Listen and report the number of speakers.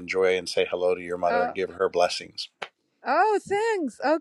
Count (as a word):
two